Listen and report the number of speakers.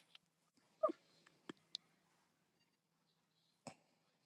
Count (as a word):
zero